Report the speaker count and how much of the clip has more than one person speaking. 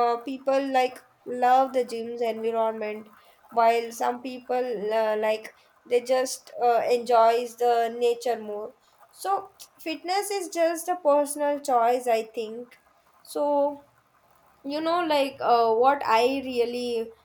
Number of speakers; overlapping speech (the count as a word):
one, no overlap